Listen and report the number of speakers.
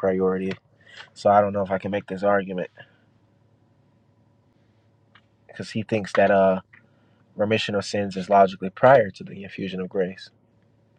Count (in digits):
1